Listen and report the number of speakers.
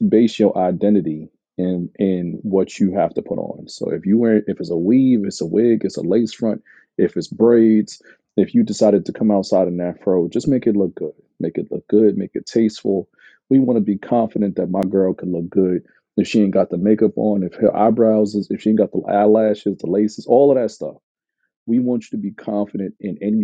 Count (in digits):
1